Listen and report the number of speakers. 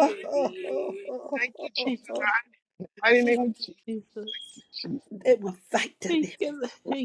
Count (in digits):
3